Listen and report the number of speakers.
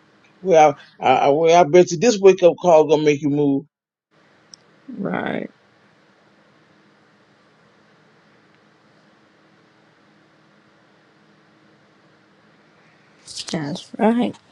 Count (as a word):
two